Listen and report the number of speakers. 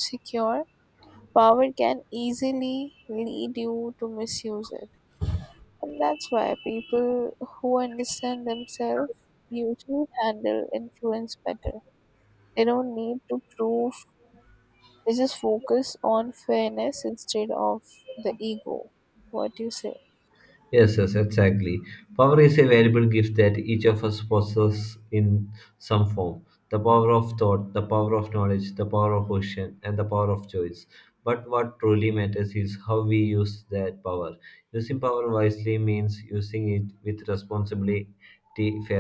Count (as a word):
two